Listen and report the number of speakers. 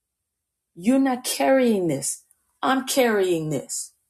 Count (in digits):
1